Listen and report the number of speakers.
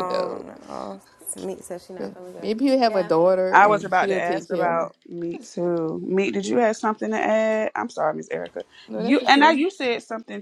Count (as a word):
three